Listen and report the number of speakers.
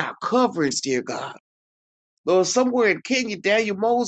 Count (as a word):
one